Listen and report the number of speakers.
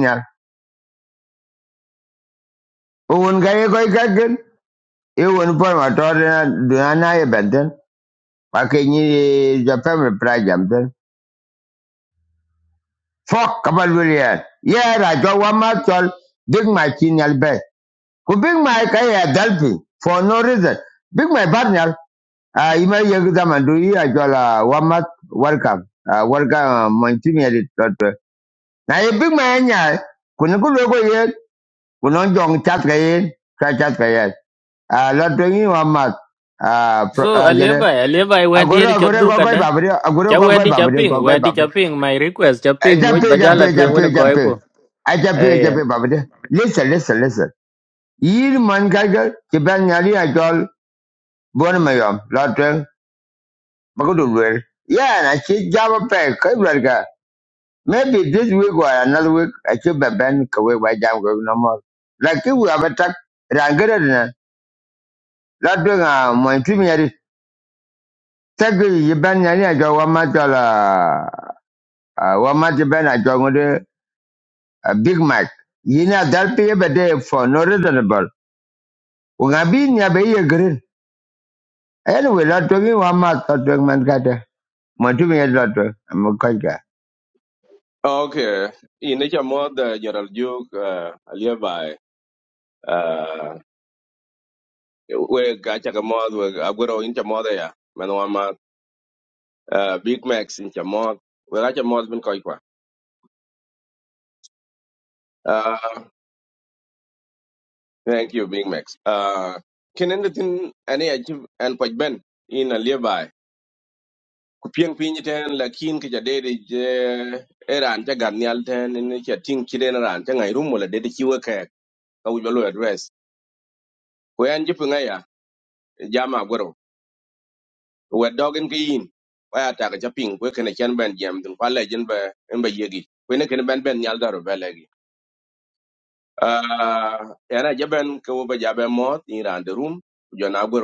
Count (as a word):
three